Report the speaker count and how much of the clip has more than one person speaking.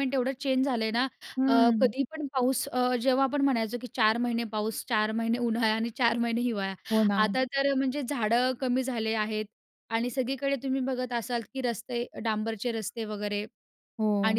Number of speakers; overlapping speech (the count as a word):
two, about 6%